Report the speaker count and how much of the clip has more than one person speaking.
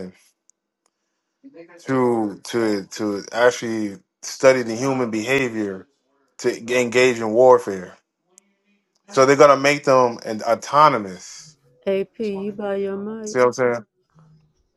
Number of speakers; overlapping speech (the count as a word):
two, no overlap